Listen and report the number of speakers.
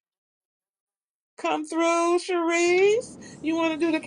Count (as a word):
one